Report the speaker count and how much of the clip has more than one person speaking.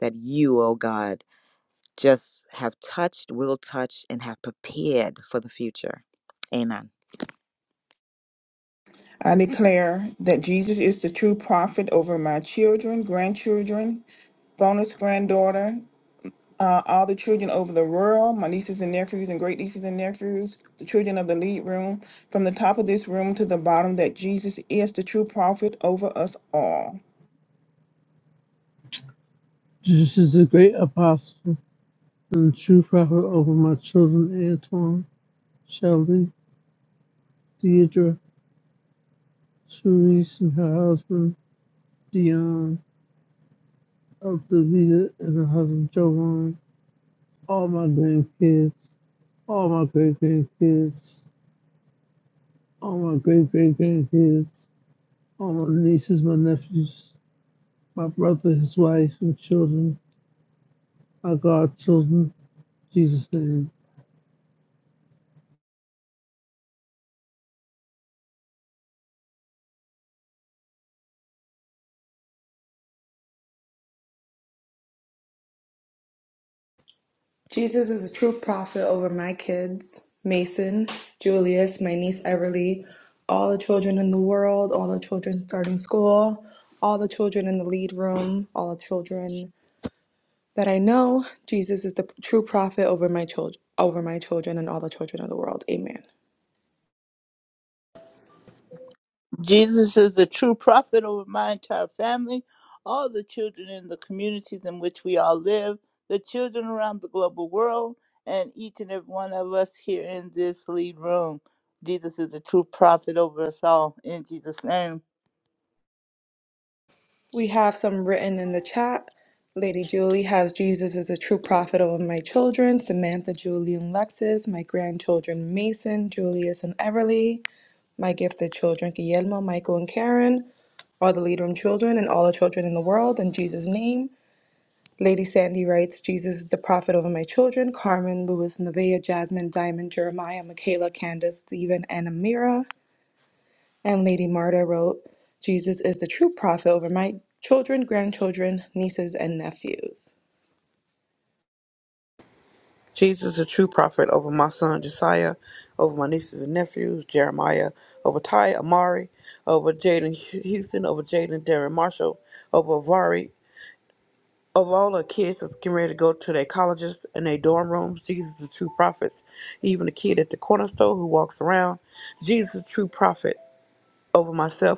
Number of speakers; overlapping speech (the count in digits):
6, no overlap